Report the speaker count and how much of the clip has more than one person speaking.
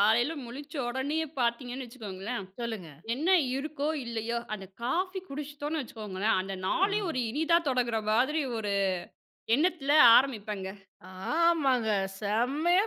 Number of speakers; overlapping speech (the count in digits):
2, about 3%